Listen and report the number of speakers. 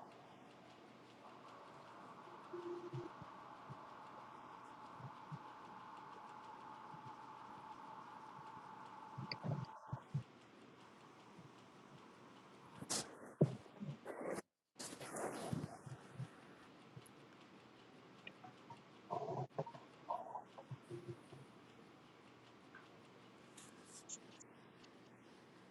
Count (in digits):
0